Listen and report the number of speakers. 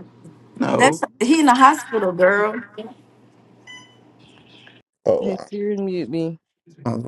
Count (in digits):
3